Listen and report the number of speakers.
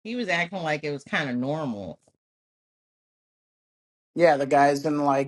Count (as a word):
two